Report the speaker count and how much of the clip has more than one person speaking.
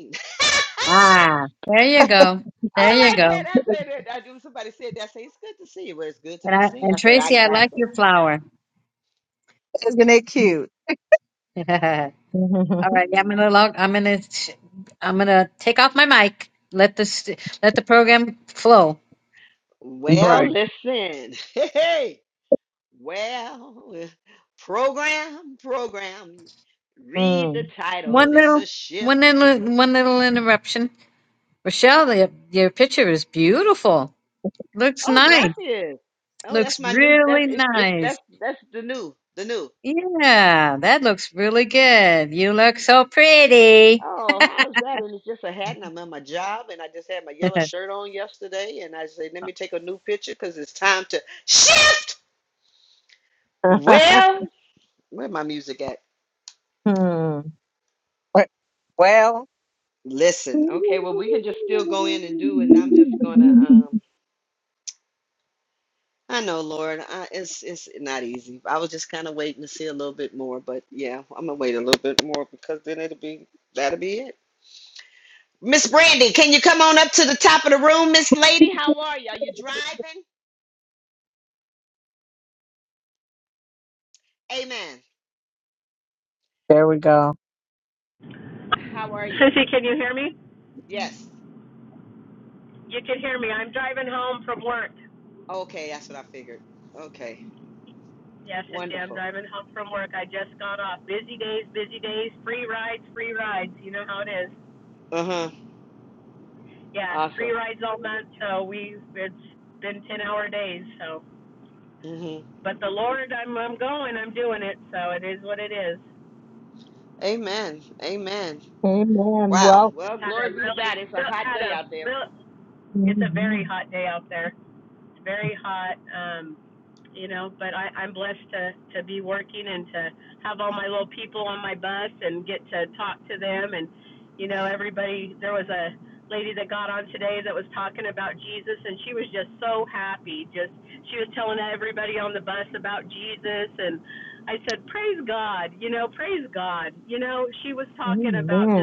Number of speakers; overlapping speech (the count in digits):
5, about 7%